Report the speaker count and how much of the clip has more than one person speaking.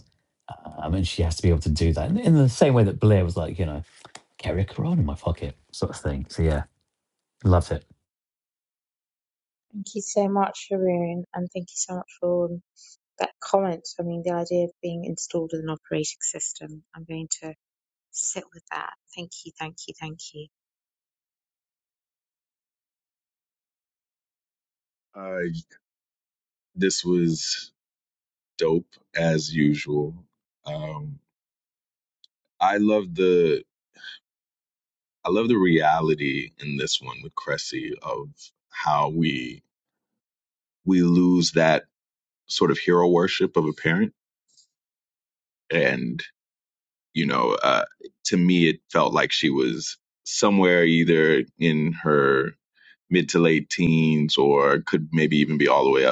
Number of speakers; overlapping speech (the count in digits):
3, no overlap